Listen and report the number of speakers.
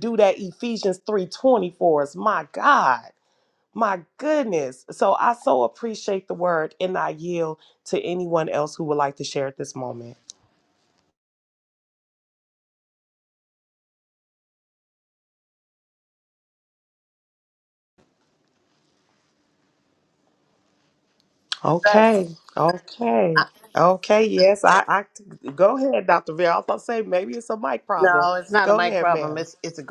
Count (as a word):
two